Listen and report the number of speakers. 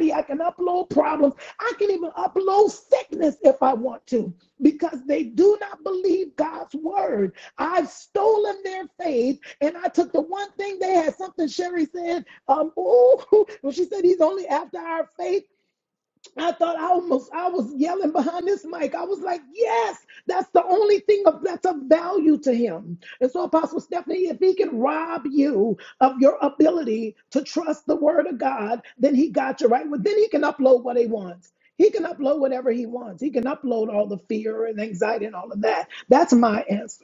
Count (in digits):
1